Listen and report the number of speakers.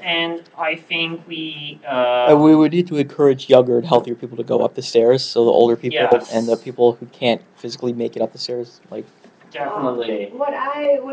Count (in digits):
3